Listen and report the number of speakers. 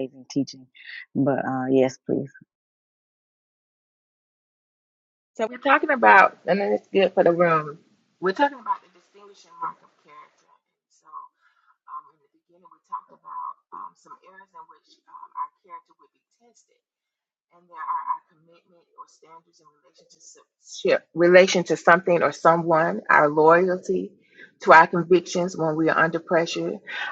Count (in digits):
2